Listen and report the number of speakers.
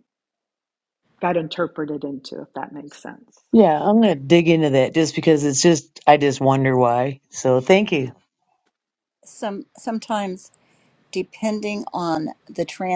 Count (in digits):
3